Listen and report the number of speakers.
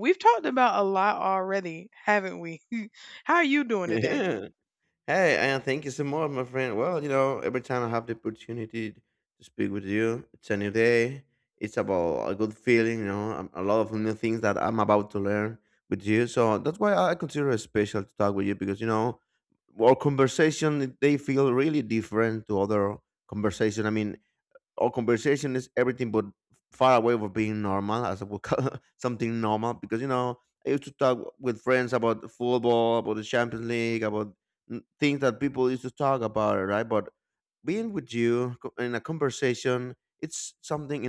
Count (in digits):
2